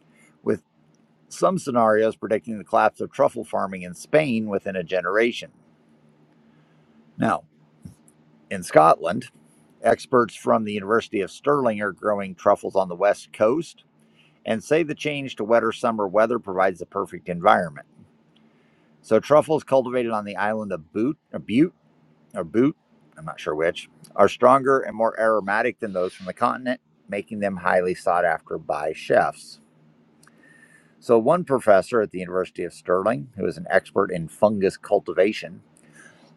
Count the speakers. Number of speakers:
one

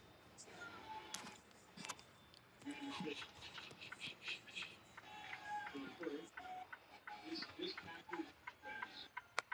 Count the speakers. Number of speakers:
zero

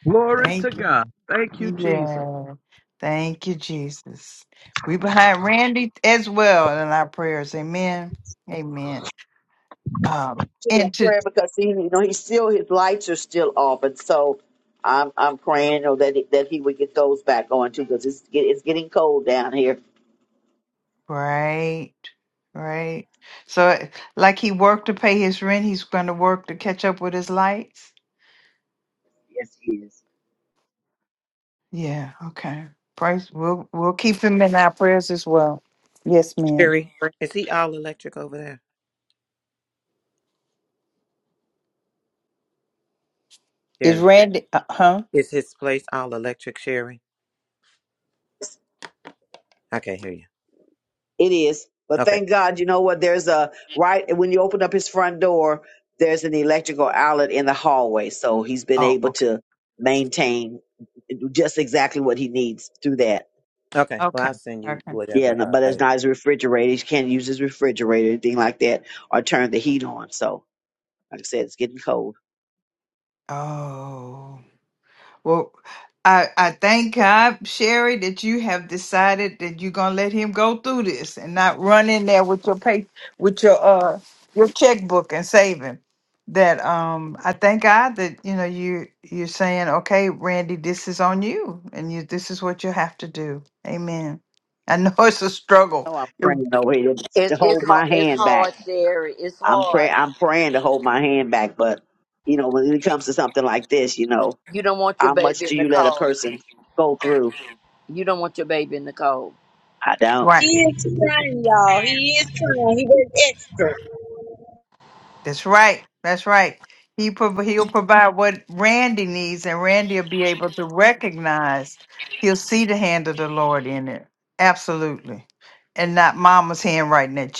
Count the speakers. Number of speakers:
six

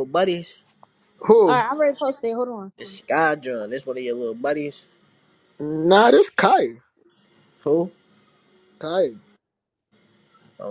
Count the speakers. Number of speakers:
three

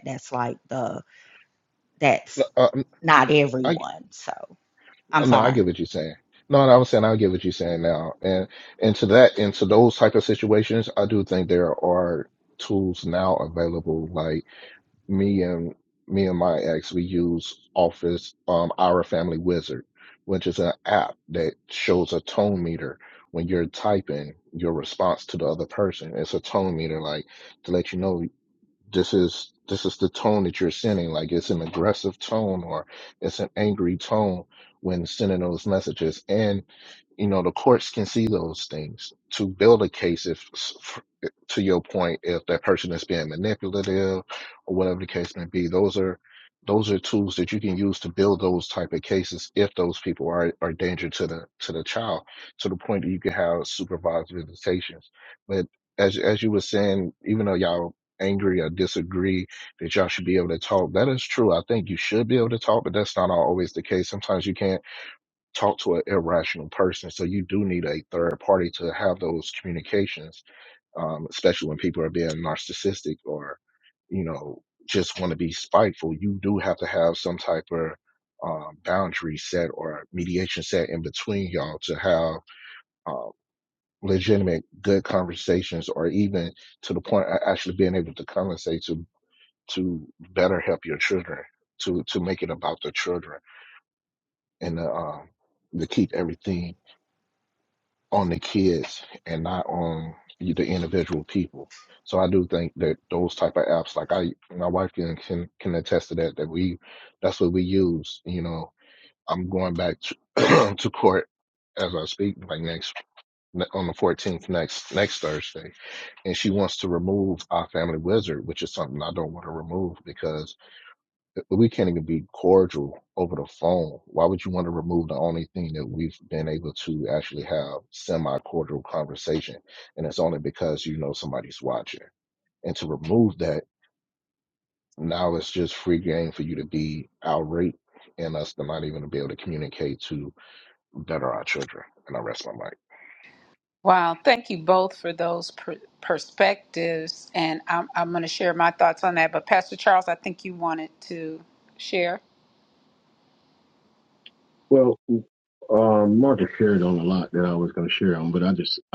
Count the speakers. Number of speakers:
four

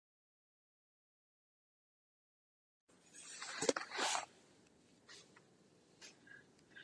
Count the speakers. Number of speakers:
zero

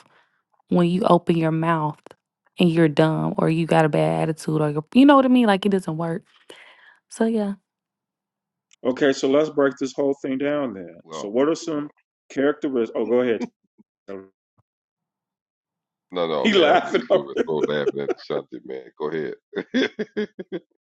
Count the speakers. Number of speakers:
three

